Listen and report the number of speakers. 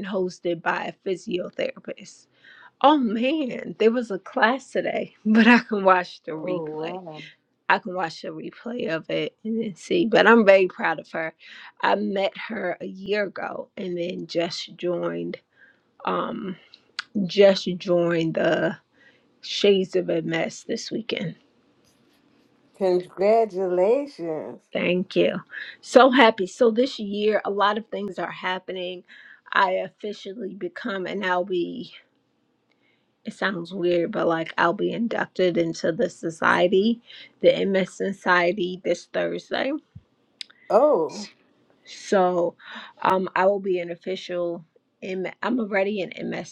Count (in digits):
2